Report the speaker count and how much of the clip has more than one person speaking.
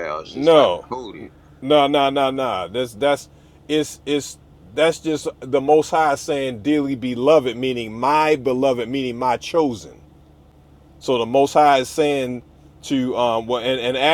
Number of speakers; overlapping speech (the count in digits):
2, about 3%